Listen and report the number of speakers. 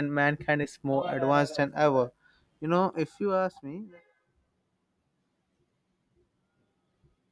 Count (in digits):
1